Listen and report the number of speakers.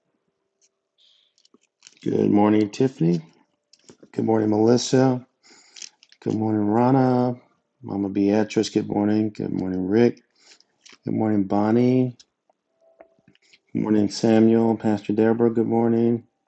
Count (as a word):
one